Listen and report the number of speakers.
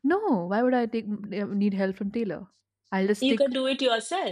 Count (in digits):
2